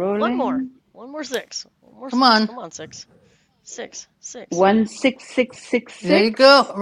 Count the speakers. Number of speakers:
three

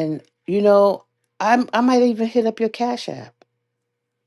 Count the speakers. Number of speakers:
one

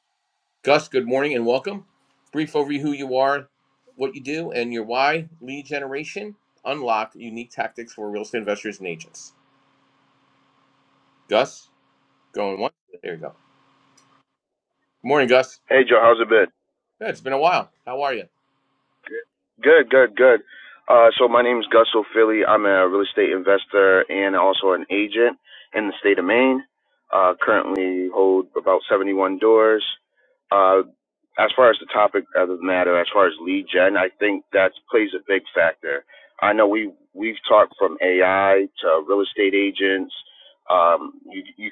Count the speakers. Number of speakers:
two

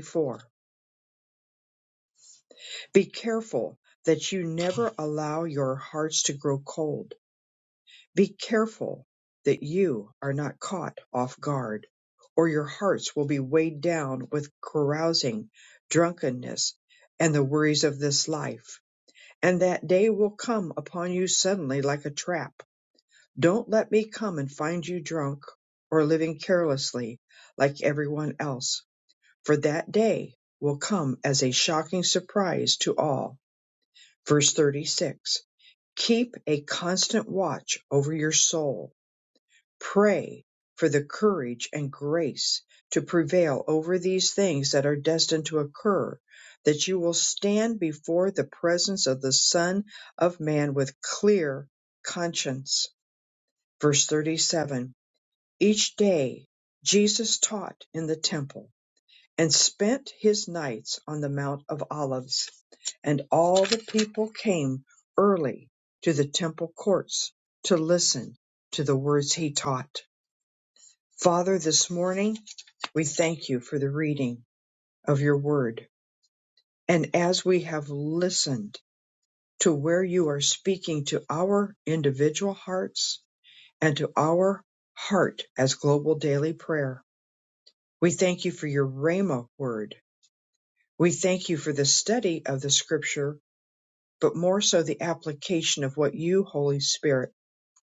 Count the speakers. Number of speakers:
one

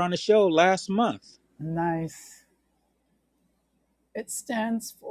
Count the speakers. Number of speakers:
two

